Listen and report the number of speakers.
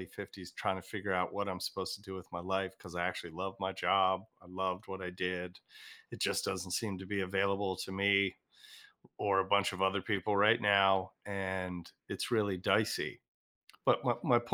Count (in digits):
1